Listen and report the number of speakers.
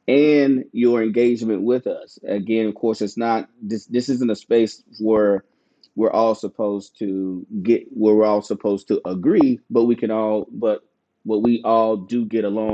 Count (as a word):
one